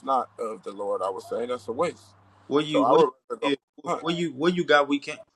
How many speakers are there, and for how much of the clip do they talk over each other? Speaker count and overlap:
two, about 8%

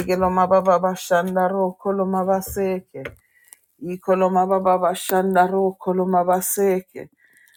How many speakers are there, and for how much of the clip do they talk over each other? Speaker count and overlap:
one, no overlap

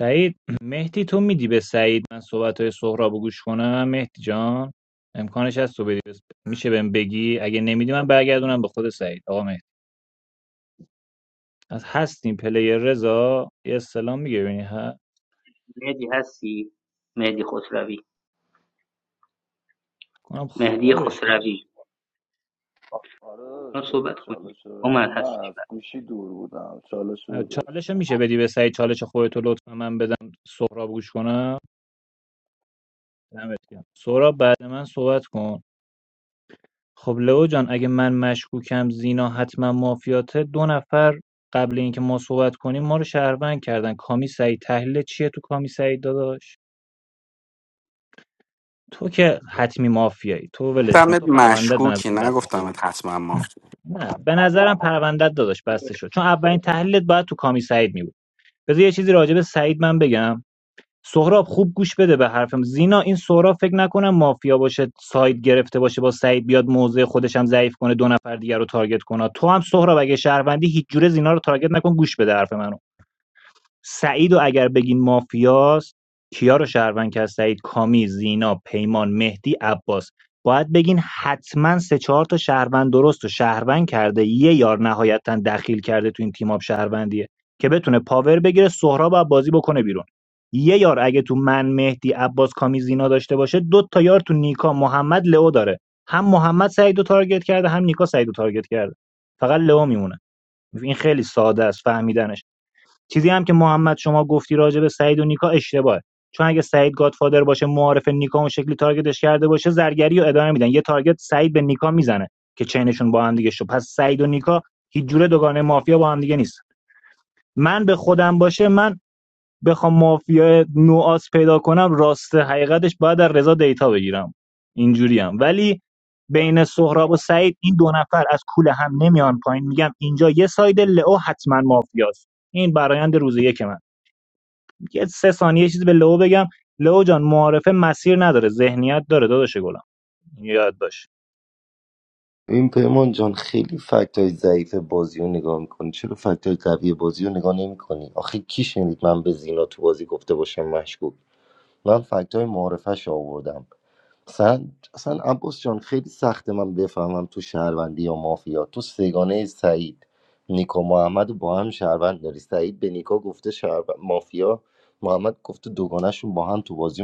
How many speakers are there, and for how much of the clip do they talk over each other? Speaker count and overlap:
five, about 2%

